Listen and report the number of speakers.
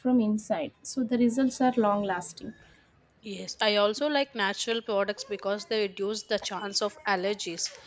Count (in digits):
2